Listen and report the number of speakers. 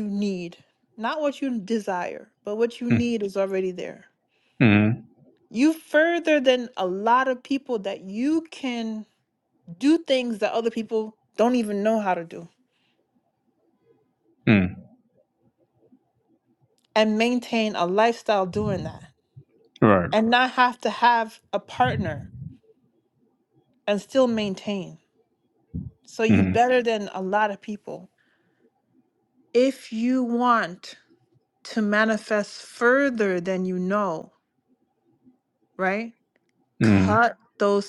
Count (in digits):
2